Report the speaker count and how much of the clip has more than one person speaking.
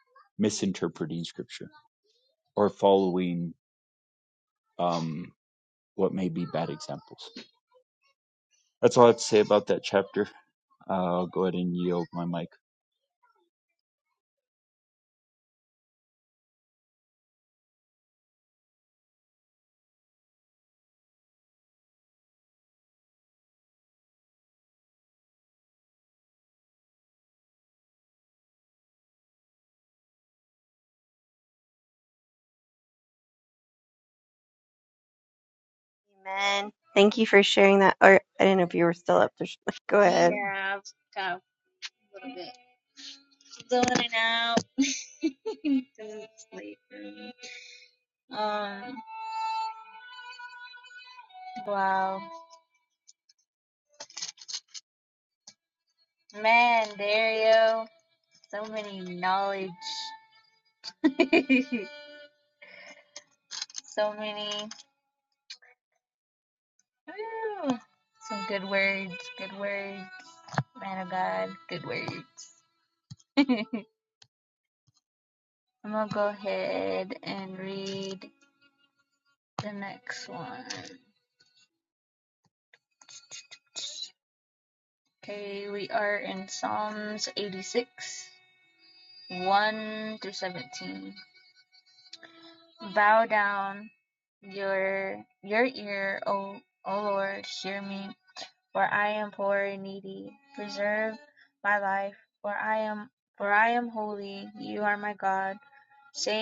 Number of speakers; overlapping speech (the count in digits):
3, under 1%